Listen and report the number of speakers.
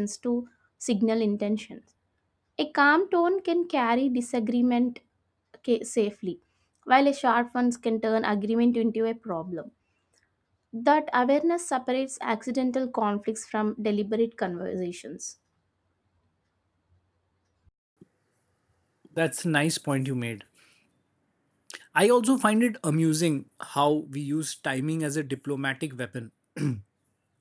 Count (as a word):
two